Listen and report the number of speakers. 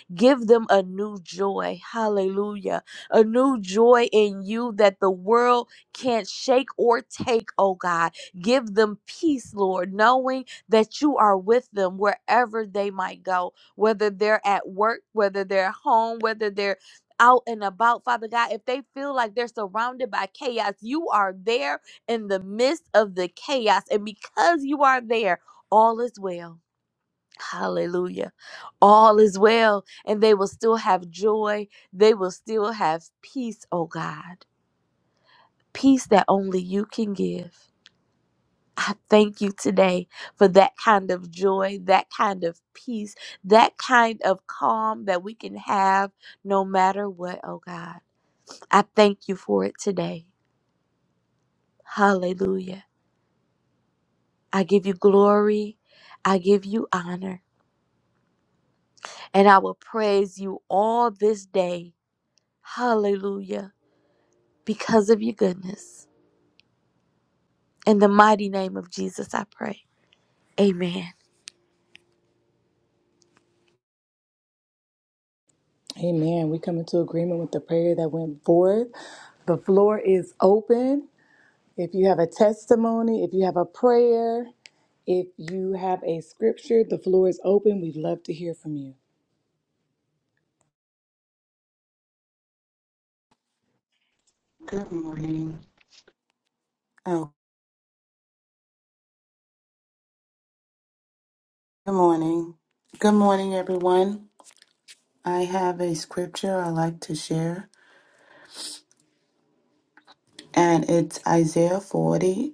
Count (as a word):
three